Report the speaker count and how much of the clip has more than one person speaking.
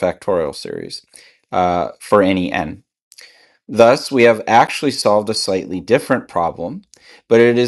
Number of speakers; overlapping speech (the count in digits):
1, no overlap